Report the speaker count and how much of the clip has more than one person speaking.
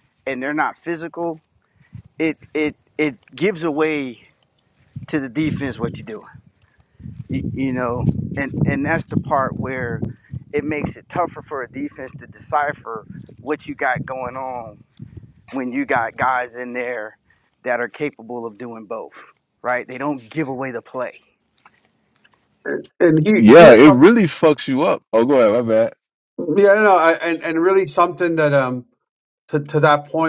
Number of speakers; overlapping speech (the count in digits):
3, about 2%